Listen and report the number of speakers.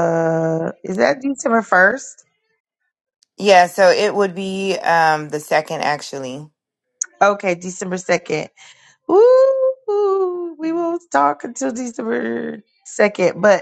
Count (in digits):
2